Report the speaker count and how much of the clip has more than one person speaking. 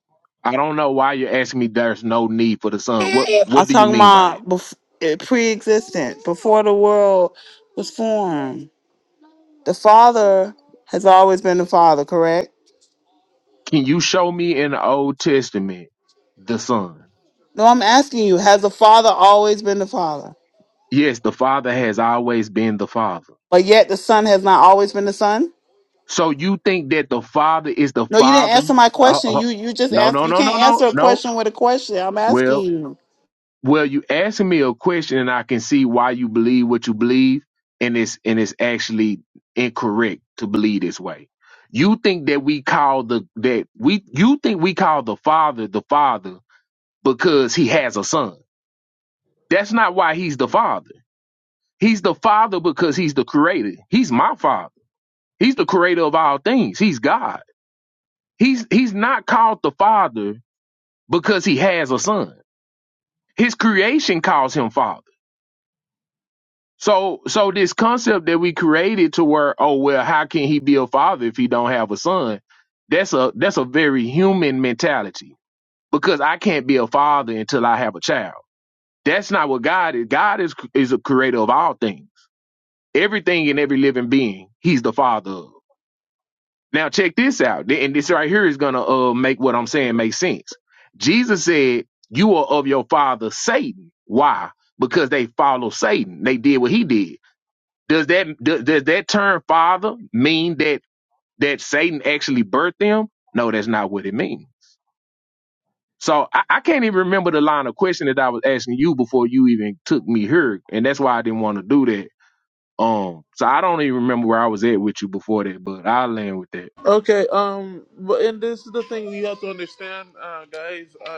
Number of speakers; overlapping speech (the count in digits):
3, about 3%